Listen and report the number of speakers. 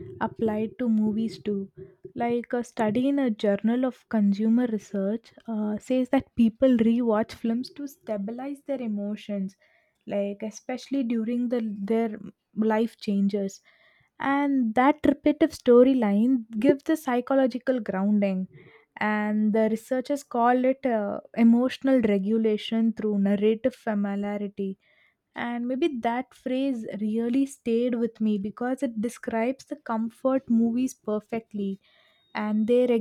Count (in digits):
1